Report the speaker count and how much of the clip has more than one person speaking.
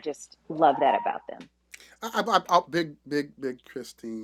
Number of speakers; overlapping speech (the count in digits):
2, no overlap